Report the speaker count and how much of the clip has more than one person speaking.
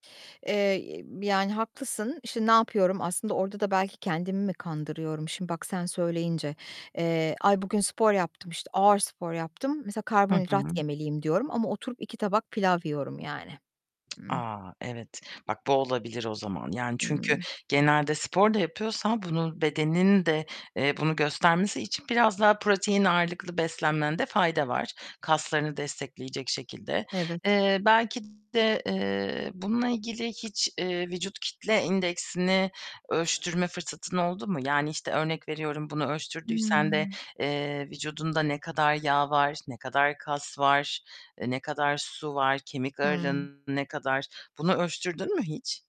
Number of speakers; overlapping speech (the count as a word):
two, about 4%